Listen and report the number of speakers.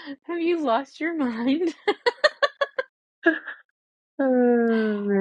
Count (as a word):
two